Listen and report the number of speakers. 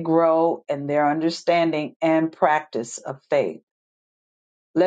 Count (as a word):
one